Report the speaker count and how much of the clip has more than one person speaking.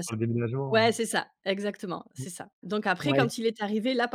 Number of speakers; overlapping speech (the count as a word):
two, about 14%